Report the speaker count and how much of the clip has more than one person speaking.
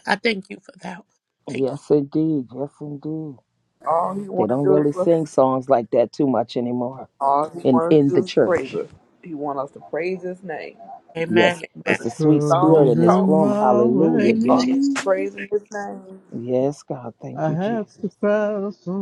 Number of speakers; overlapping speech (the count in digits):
4, about 30%